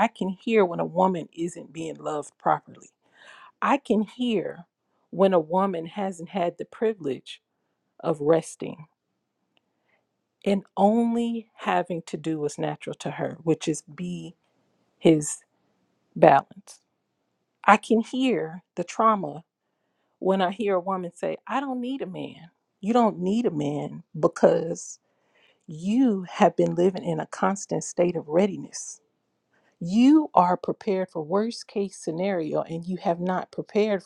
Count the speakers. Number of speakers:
1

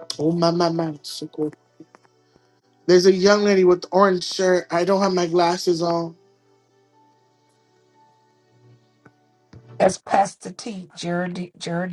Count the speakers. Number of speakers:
2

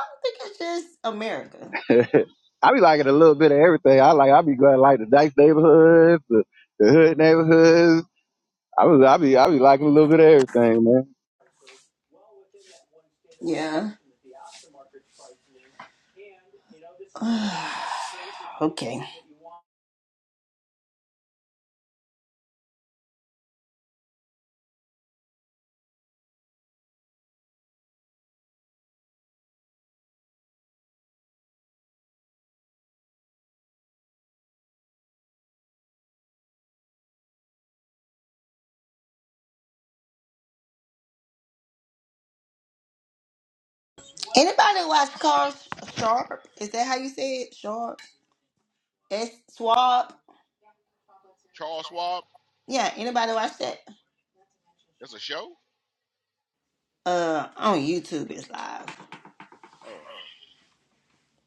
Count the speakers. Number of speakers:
3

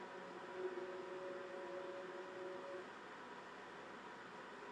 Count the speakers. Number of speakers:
0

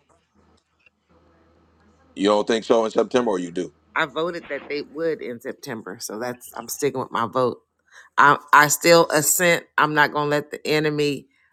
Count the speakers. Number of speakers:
2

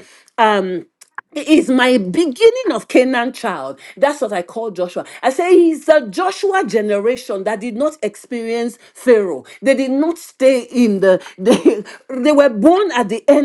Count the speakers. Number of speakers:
1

